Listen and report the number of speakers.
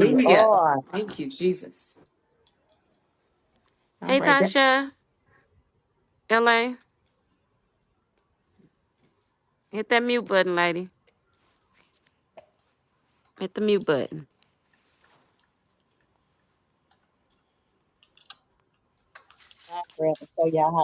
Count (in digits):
3